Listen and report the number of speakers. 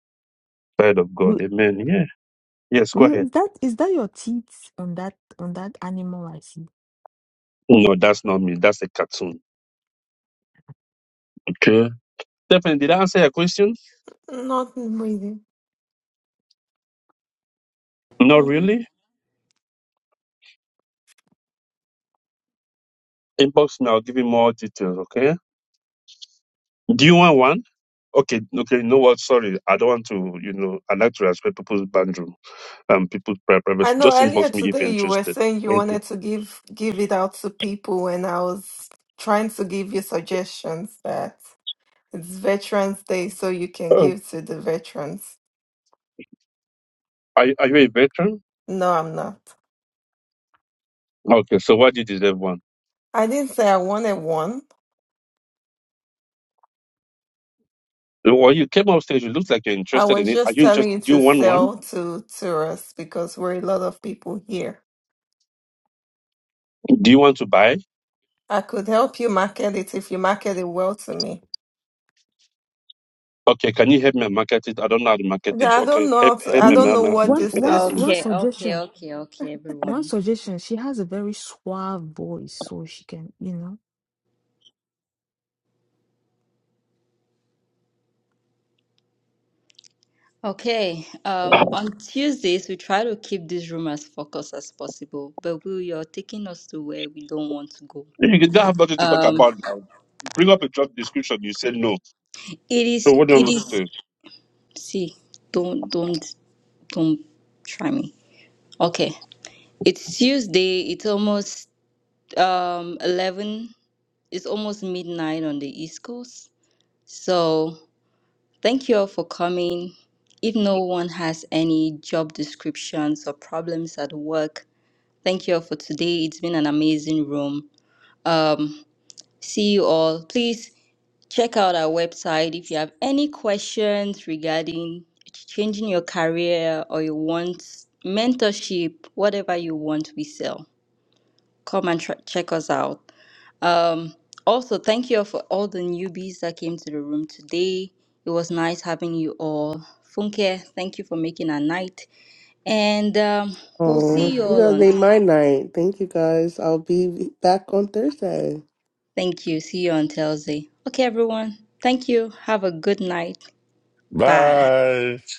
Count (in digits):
6